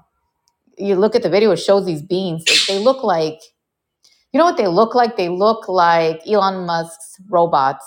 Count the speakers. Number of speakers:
1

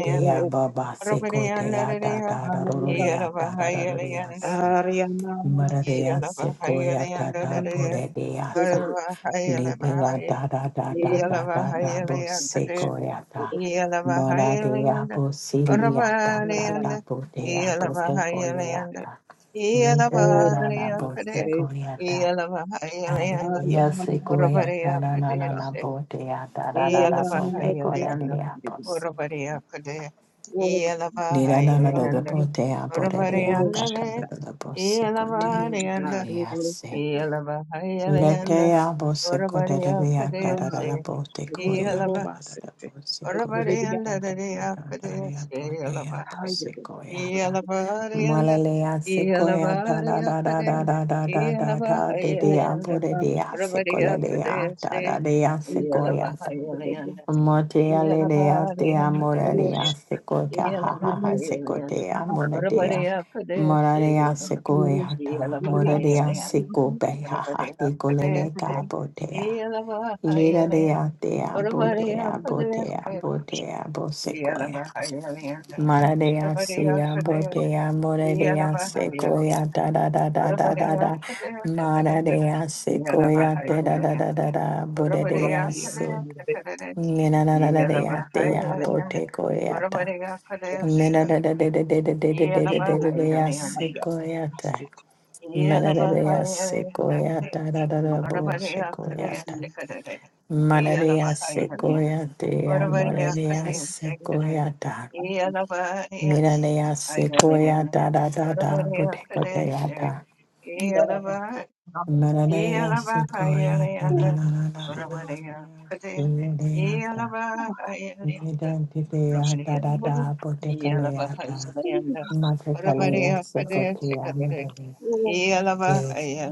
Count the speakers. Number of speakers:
3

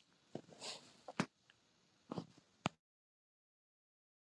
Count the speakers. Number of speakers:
0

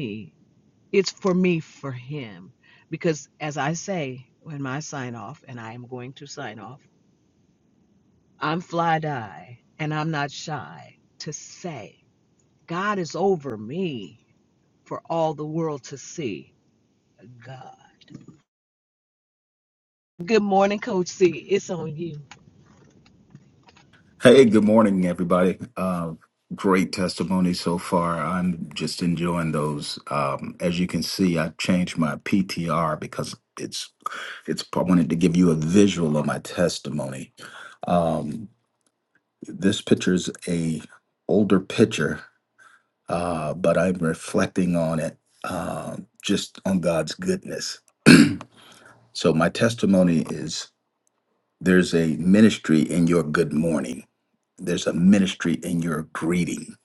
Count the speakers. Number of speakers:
2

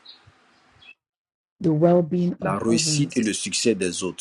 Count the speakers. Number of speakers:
2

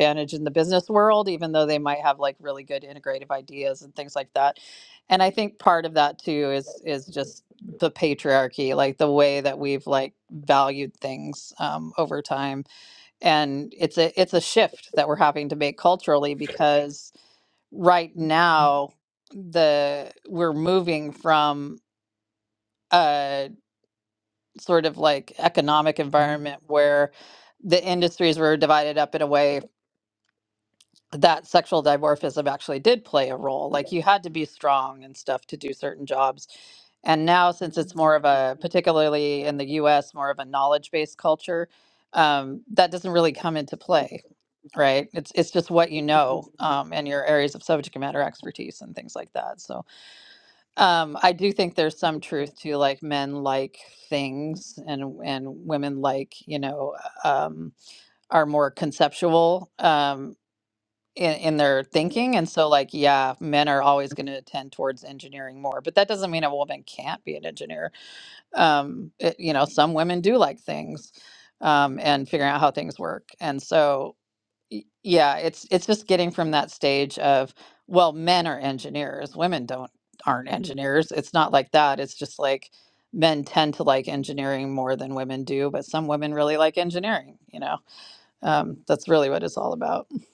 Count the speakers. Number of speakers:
1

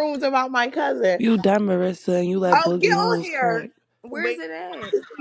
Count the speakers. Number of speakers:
3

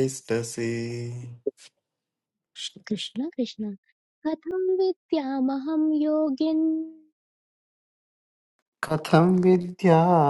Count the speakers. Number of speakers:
3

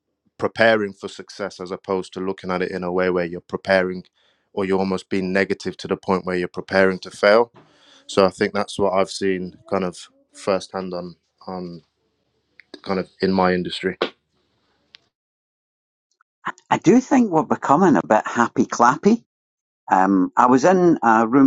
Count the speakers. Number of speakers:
2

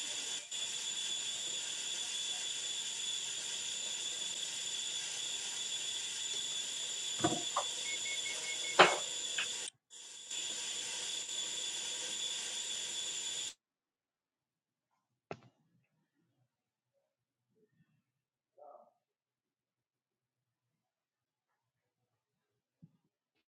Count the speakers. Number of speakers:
0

